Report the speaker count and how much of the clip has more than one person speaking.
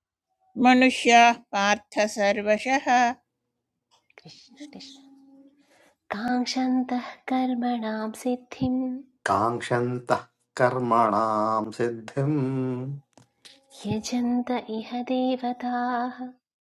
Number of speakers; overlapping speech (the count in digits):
3, no overlap